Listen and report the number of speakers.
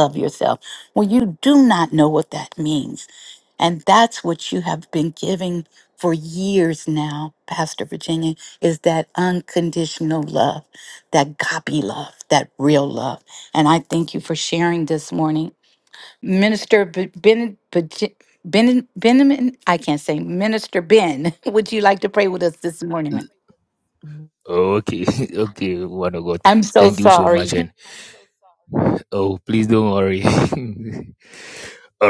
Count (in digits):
2